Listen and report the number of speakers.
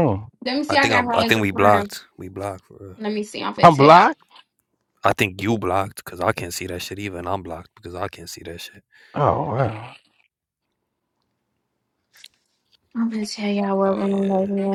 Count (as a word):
three